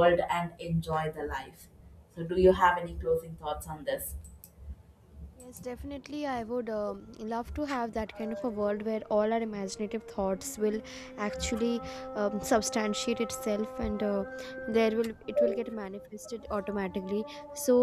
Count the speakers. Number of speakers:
two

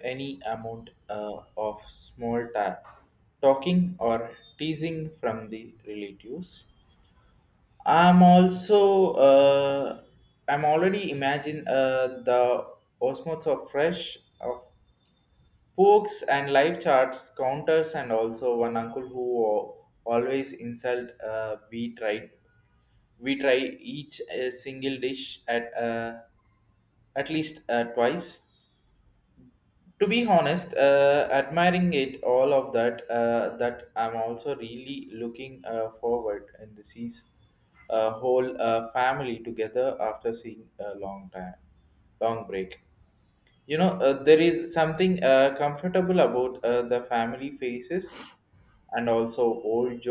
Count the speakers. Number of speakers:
one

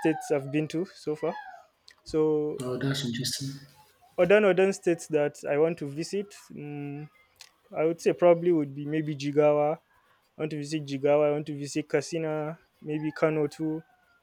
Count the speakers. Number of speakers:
two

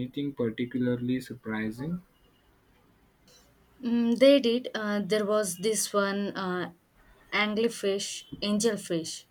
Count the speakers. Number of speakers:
two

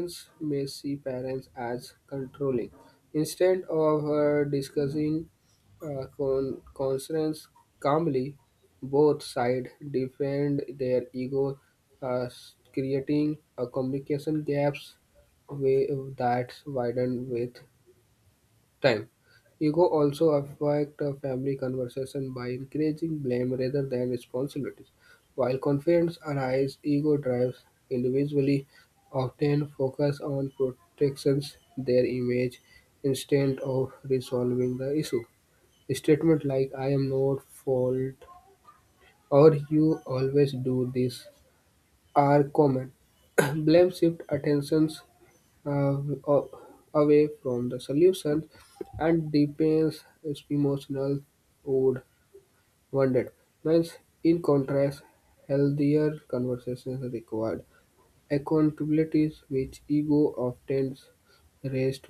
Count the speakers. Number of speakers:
one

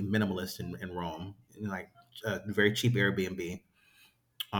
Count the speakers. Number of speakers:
one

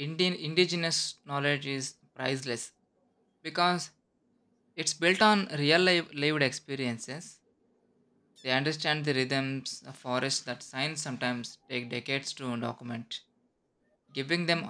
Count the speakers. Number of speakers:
one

